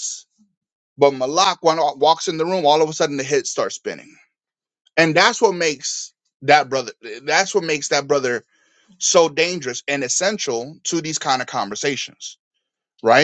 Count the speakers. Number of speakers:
1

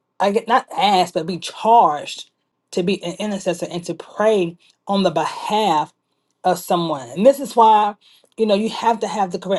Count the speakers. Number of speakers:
1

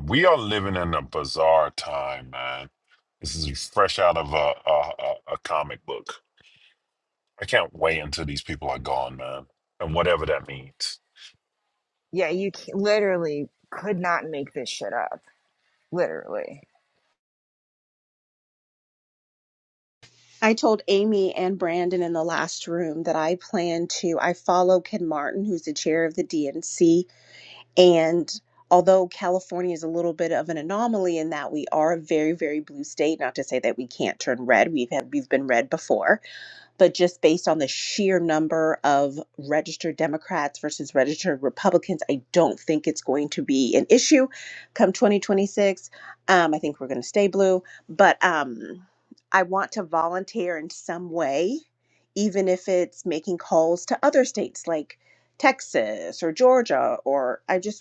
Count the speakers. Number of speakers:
3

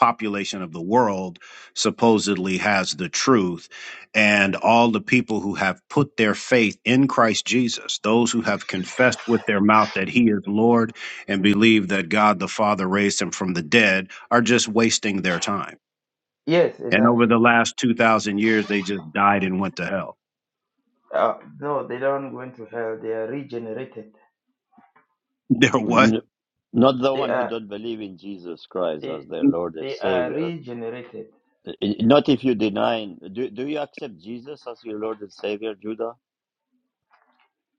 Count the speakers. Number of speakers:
3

